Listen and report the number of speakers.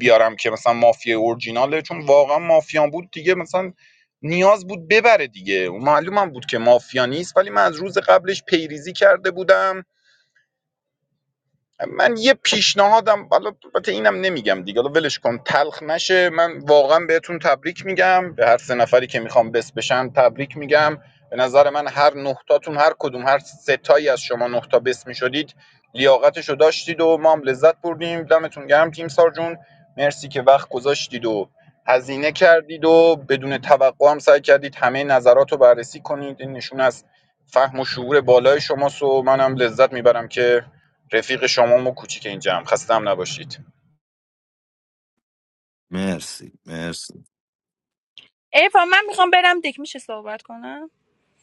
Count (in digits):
3